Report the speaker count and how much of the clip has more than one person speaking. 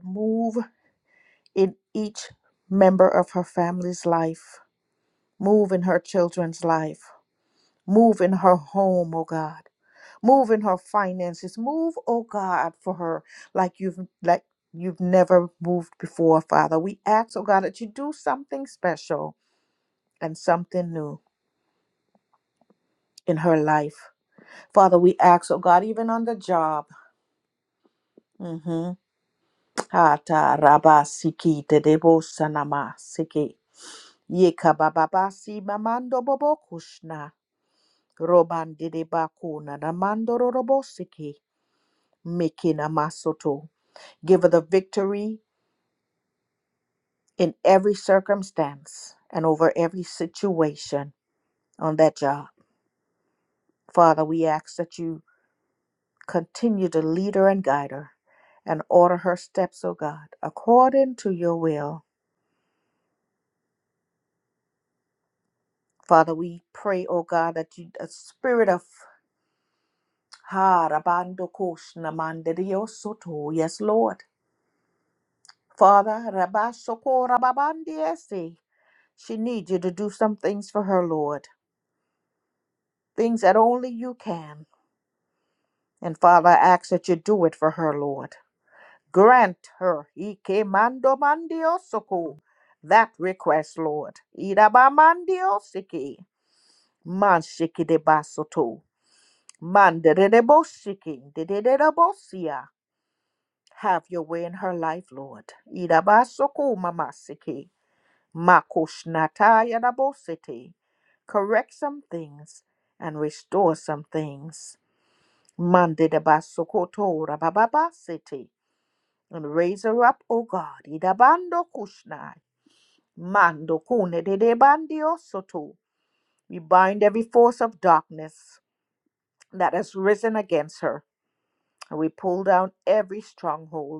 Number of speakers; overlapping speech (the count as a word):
one, no overlap